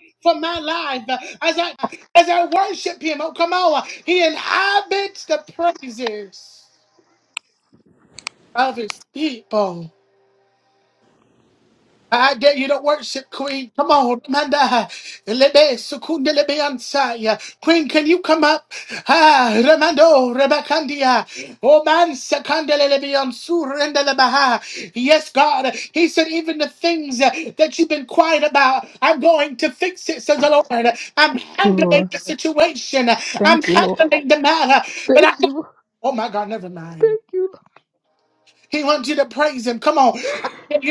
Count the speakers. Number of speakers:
2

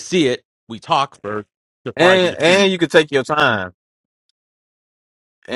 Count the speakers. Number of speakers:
2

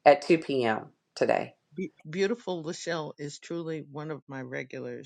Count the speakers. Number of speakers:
2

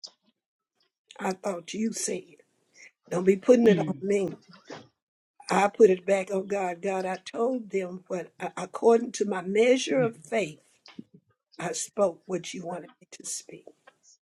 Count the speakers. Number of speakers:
1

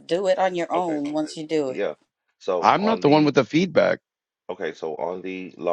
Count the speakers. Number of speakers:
3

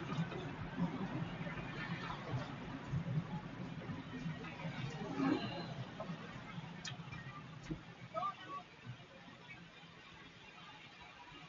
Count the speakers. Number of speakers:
0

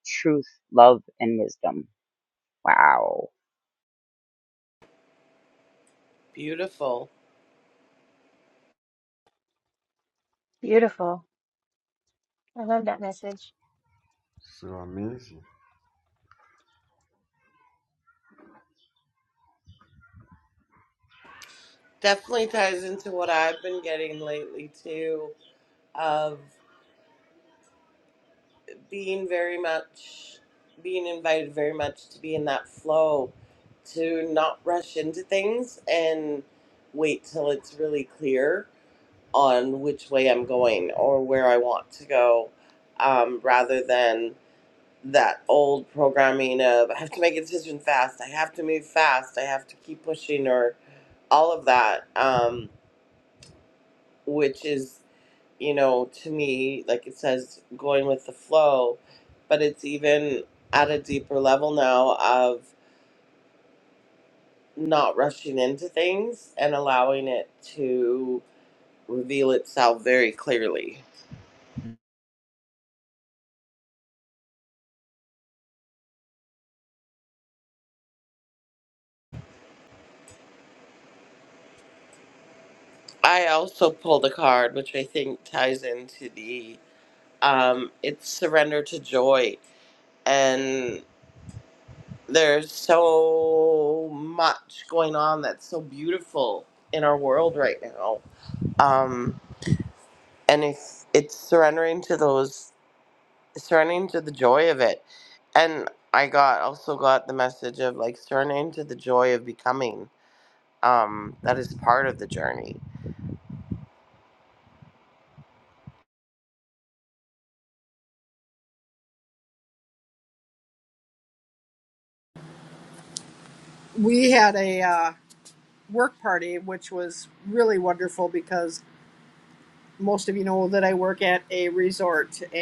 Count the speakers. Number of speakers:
5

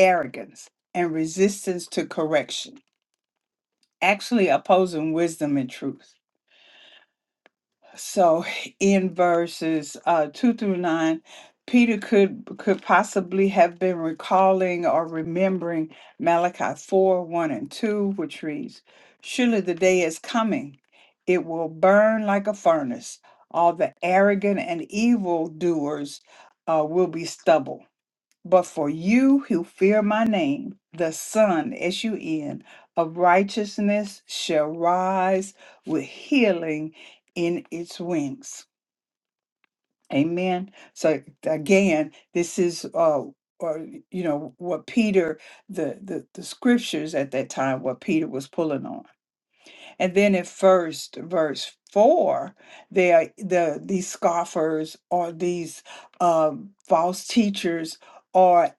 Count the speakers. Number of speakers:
1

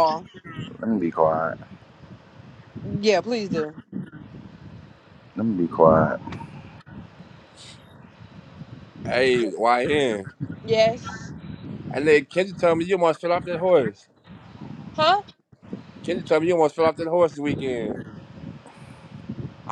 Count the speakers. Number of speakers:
3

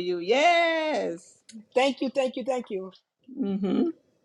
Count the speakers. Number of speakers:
2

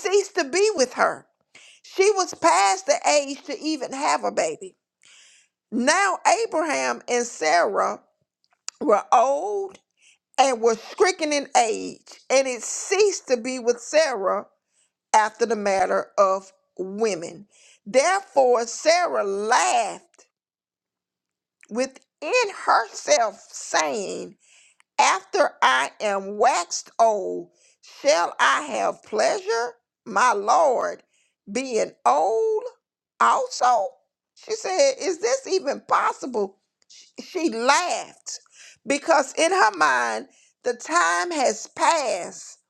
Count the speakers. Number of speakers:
1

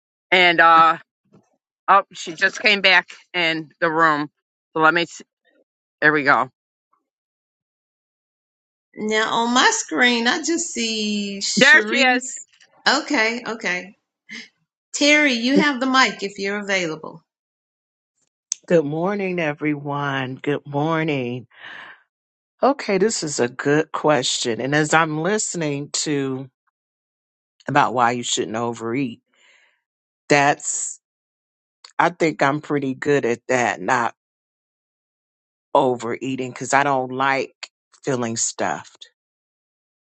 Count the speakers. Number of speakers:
3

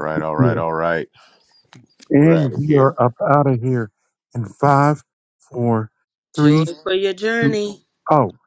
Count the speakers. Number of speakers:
3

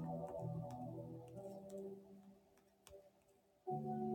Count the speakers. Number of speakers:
0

